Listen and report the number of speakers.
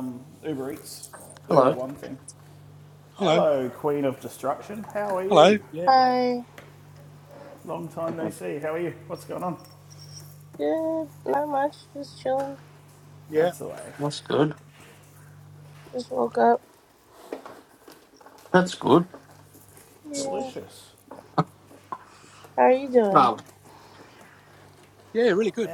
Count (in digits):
4